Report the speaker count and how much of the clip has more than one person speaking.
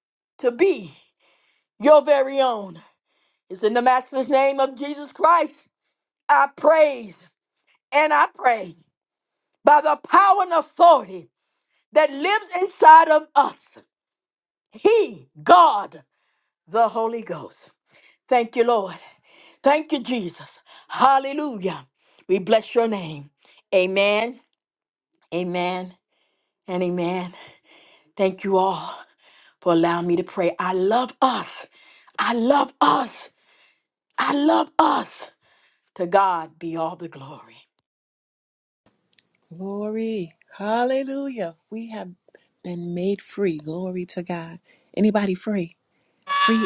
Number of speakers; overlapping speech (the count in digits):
2, no overlap